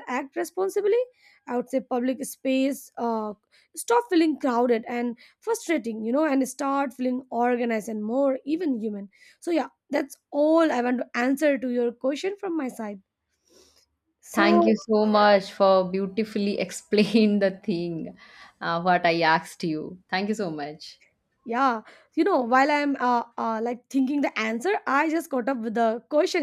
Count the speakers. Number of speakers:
two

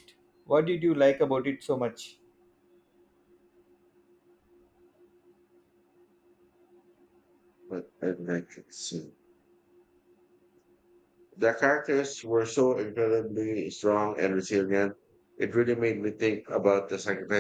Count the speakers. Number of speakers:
two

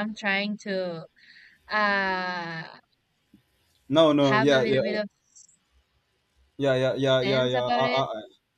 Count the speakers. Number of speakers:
two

